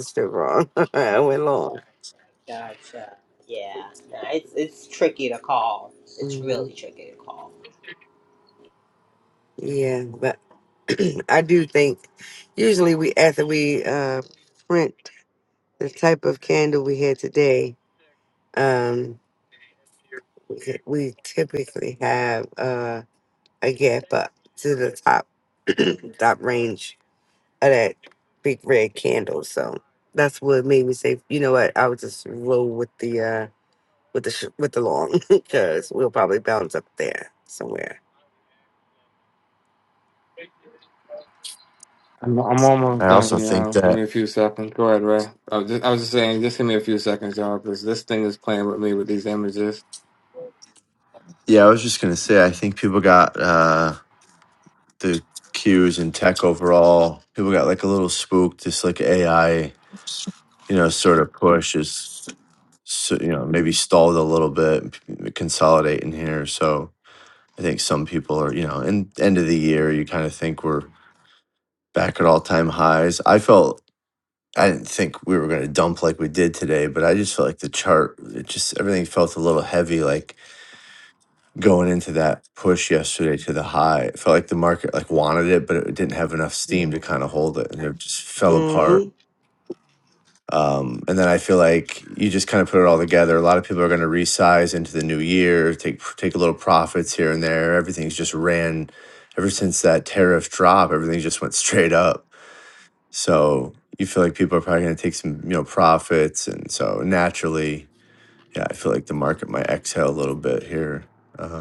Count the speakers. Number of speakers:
four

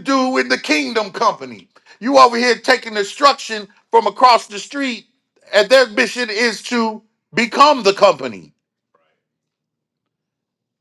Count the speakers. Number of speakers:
one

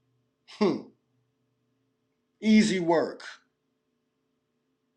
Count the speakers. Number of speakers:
one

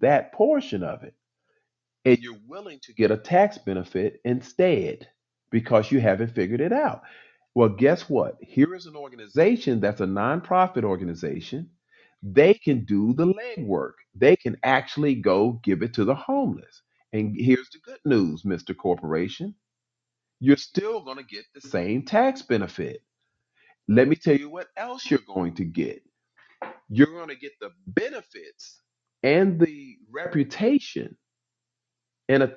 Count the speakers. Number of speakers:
one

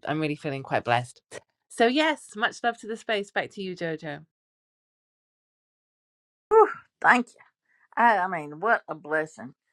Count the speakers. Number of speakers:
two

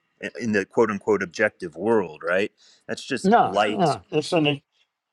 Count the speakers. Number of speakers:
two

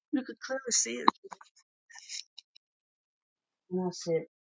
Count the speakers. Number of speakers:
one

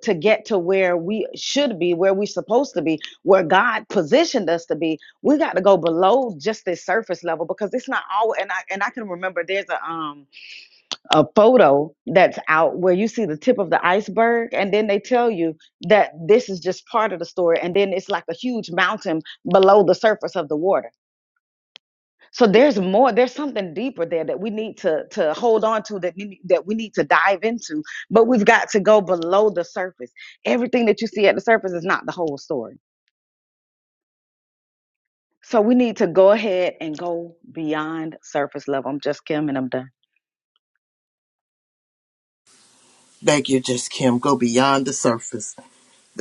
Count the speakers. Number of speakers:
two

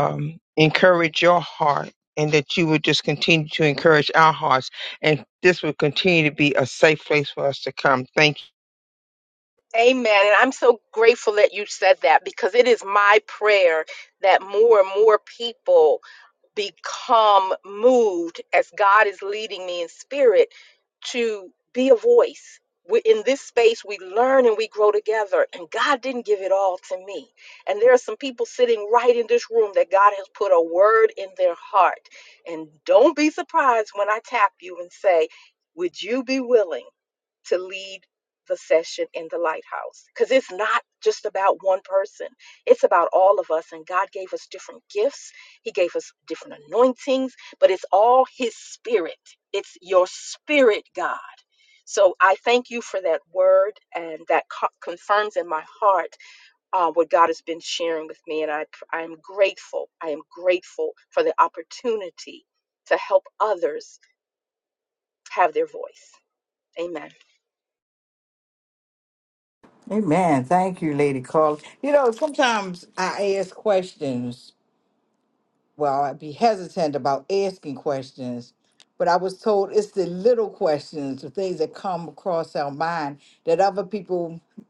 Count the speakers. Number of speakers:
three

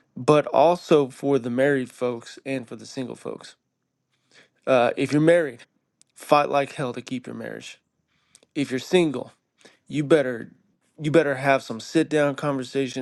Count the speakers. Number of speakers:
one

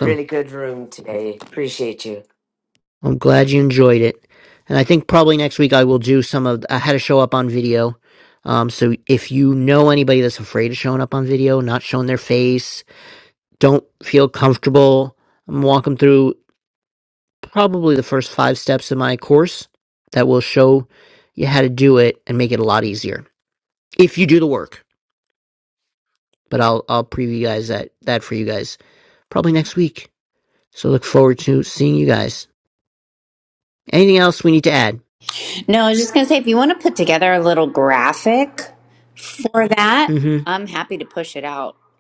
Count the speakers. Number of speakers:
three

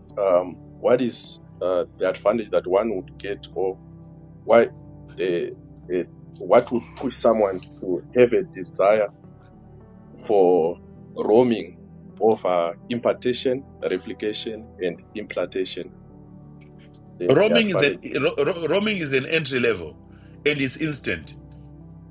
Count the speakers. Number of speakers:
two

